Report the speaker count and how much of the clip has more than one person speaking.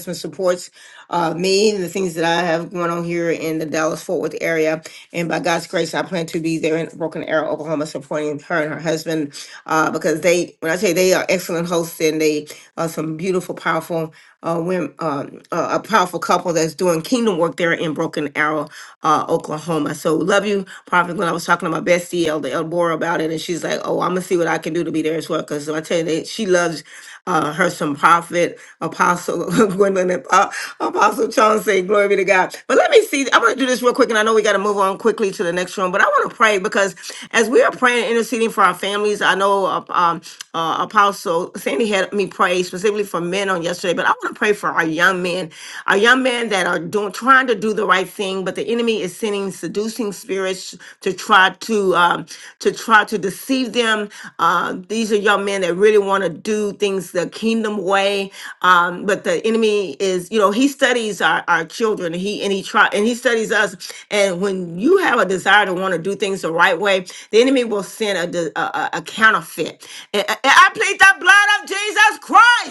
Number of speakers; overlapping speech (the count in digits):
1, no overlap